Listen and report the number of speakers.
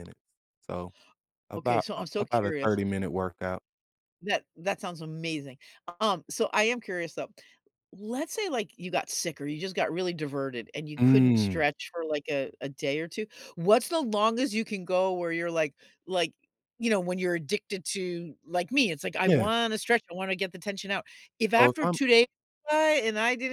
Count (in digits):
2